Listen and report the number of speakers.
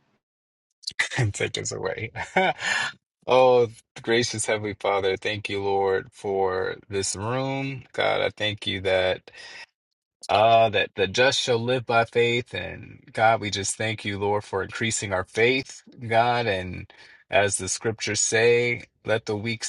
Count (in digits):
1